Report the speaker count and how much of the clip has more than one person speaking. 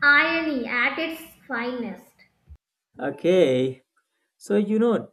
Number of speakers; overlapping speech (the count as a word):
two, no overlap